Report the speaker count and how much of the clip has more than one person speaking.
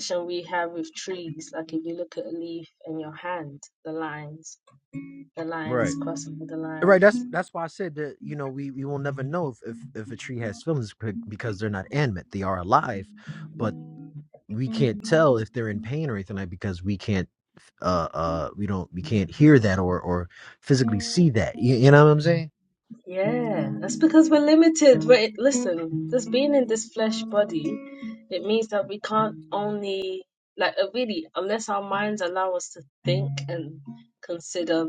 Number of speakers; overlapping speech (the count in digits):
2, about 2%